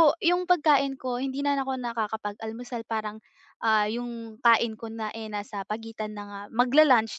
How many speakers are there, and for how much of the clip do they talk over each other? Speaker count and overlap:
1, no overlap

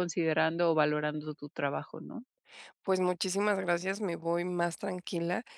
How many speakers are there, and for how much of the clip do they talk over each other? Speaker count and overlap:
2, no overlap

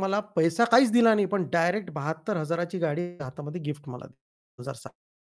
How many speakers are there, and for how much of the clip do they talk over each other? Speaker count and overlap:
1, no overlap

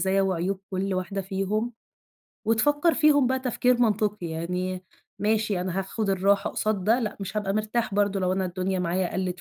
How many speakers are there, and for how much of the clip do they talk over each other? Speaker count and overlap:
1, no overlap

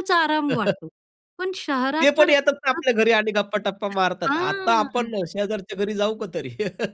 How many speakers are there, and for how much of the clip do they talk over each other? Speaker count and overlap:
2, about 18%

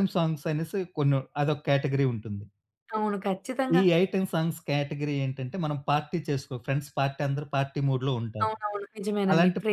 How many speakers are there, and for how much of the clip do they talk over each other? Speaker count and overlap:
2, about 7%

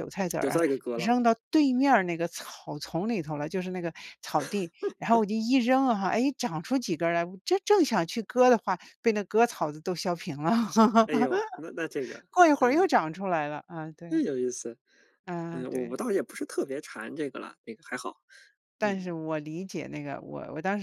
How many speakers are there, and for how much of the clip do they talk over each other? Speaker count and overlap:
2, about 6%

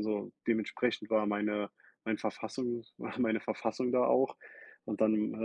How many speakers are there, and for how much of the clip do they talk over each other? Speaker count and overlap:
1, no overlap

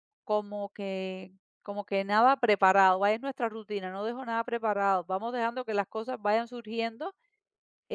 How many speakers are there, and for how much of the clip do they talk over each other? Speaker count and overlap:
1, no overlap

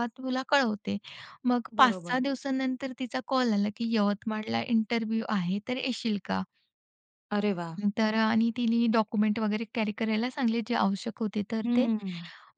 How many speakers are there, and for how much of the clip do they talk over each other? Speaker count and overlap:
2, about 6%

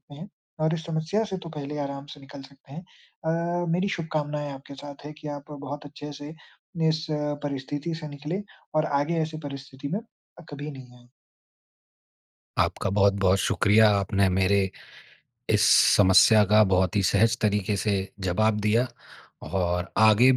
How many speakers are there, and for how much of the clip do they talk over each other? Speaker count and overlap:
2, no overlap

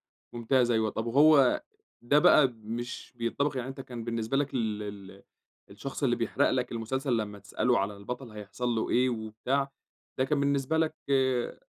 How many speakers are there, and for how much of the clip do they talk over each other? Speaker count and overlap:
1, no overlap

